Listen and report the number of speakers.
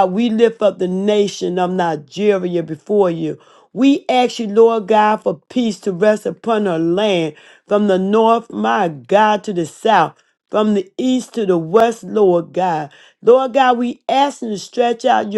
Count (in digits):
1